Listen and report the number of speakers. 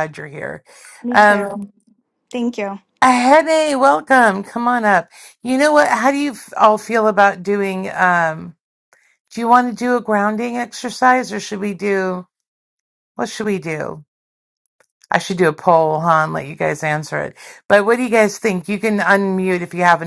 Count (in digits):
2